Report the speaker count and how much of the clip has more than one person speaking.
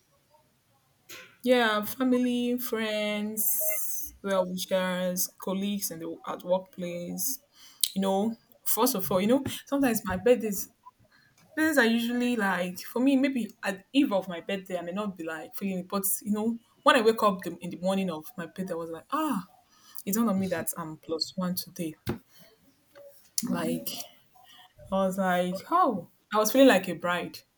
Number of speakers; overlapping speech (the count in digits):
1, no overlap